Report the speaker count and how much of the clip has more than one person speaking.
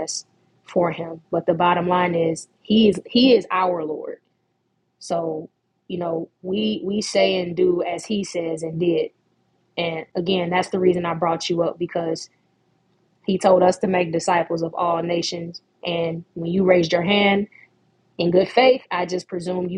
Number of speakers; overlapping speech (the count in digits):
1, no overlap